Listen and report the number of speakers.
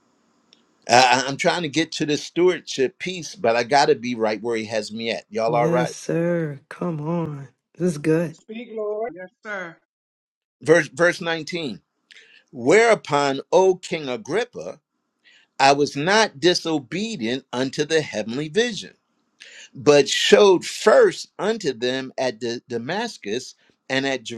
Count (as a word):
three